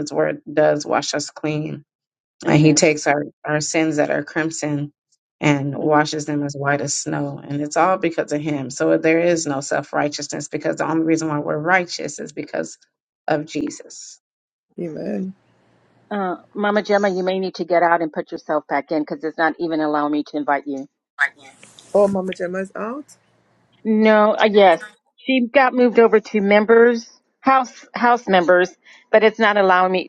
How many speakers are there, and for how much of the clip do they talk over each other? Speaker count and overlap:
3, about 2%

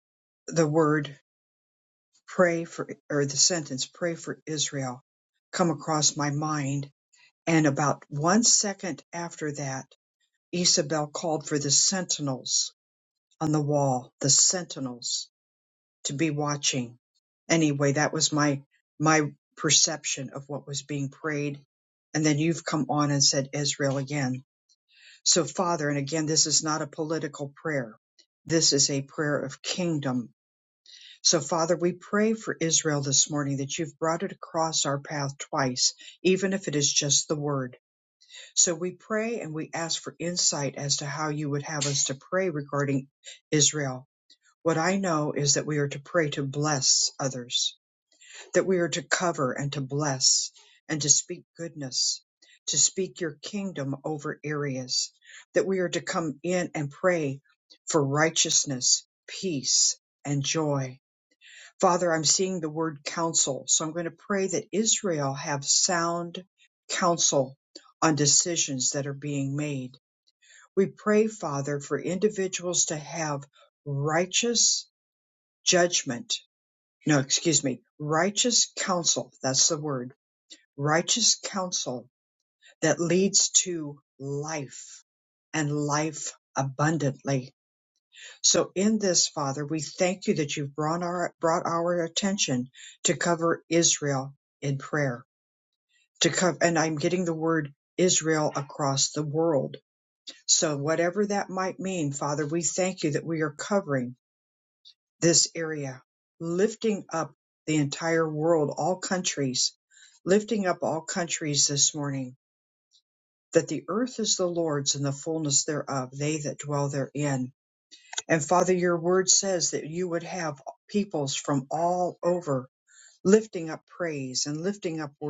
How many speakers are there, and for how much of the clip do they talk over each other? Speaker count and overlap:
1, no overlap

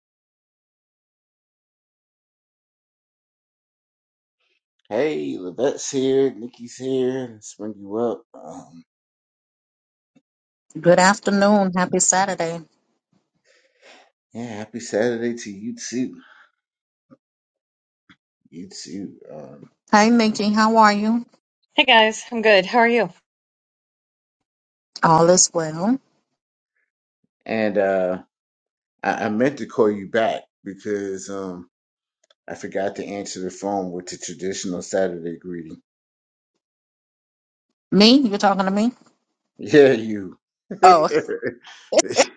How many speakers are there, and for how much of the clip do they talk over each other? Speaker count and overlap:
3, about 1%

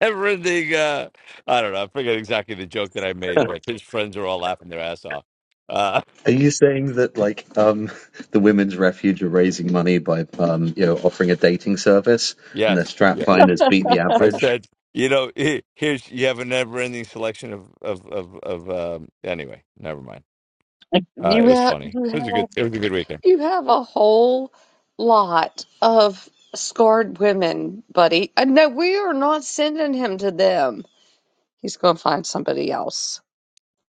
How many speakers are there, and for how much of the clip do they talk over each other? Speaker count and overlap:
3, about 5%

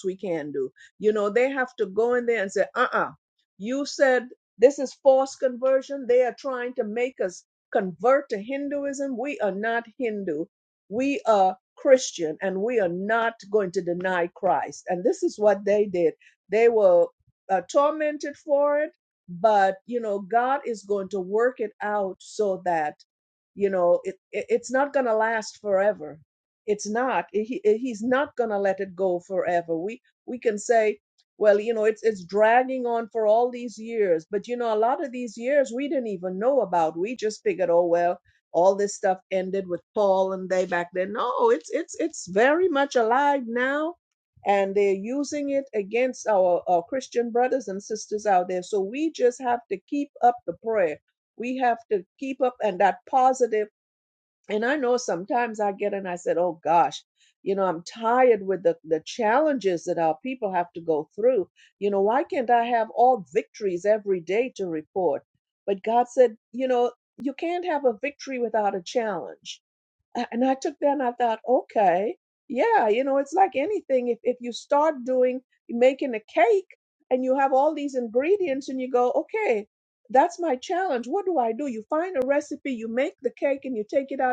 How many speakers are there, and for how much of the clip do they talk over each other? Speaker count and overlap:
1, no overlap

